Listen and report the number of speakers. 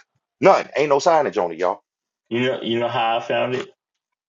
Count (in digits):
2